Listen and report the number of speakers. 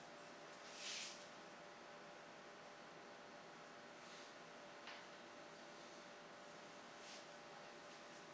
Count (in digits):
0